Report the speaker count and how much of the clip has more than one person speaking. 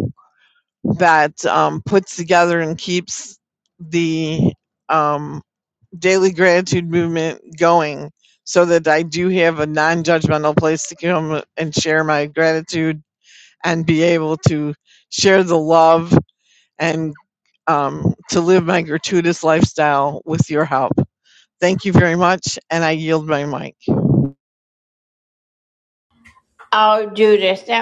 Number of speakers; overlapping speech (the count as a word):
two, no overlap